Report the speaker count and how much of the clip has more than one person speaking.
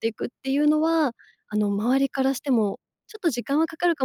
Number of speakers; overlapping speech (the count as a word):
one, no overlap